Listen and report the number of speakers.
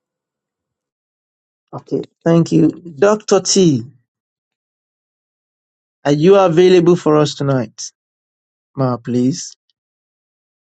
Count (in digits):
1